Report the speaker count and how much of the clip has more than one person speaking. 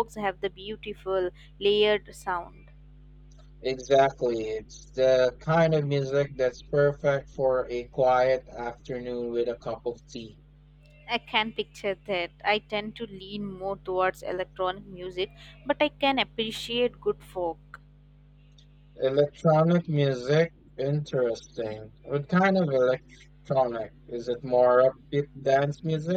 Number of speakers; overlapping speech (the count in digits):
2, no overlap